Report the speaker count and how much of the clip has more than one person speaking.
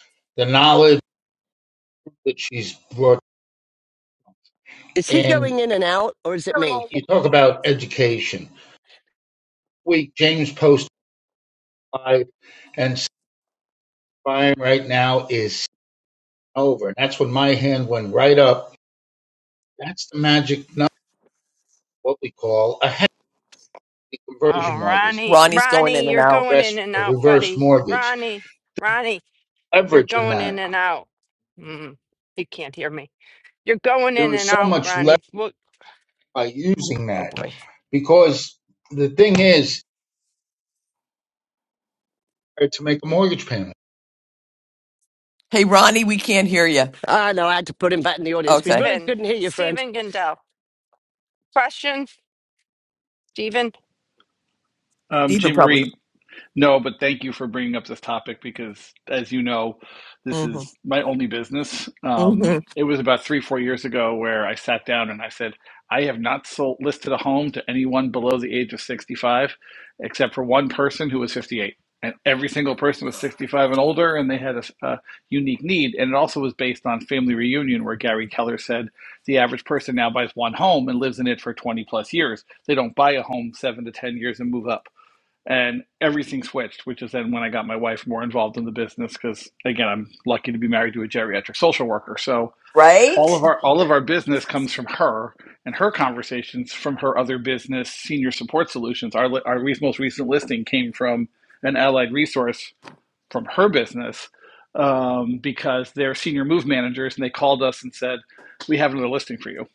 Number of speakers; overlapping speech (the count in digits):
5, about 8%